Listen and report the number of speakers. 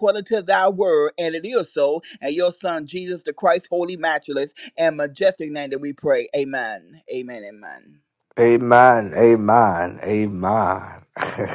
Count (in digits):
2